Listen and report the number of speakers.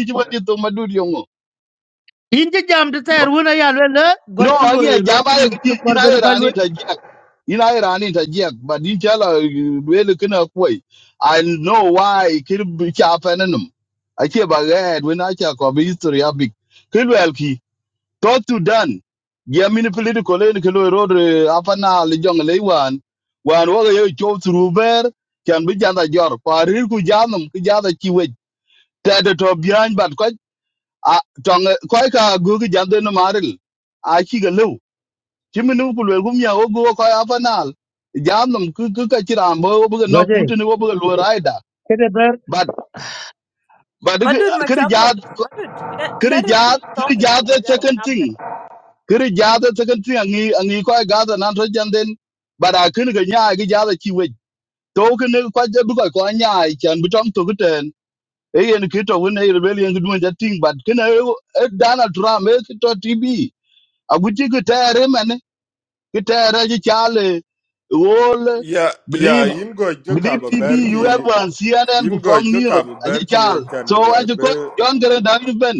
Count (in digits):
4